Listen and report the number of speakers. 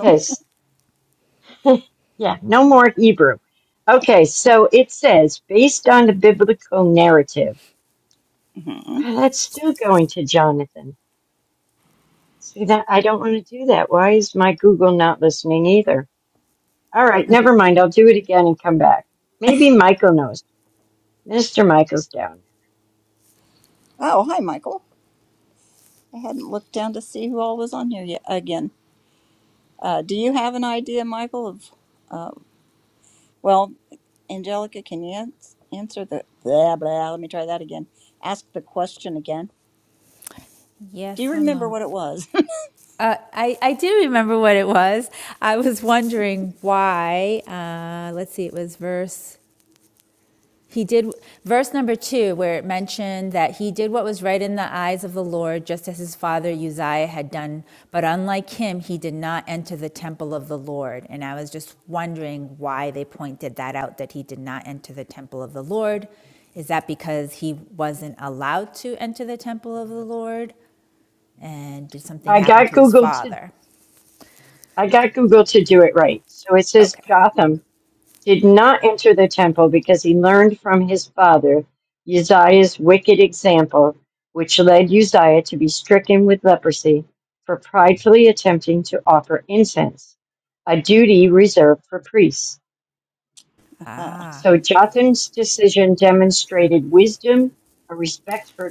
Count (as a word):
three